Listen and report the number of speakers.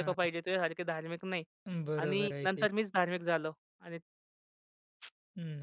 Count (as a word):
two